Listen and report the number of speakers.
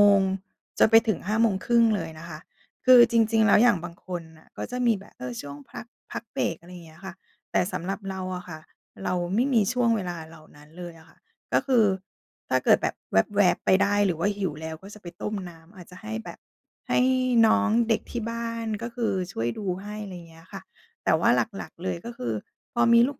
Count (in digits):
1